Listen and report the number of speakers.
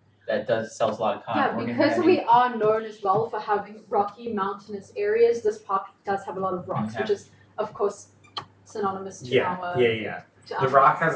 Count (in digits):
3